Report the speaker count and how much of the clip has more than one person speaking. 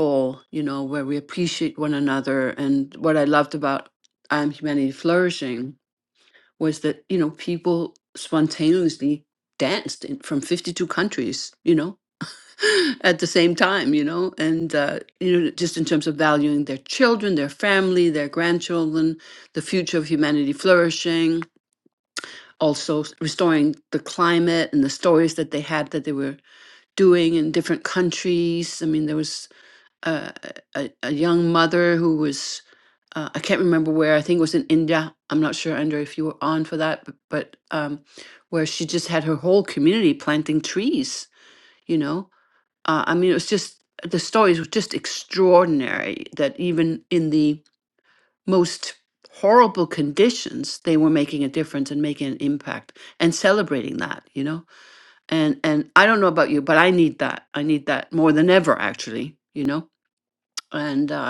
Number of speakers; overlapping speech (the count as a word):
one, no overlap